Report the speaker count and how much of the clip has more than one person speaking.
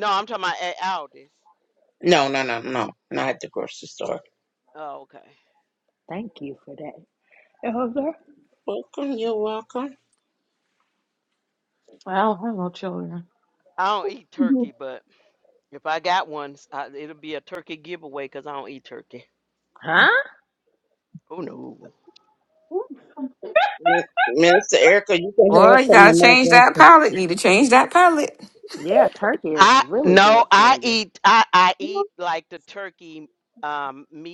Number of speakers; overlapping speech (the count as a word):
five, about 9%